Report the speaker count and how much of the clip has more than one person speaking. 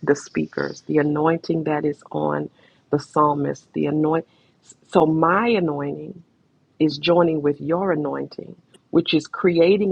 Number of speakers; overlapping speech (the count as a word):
one, no overlap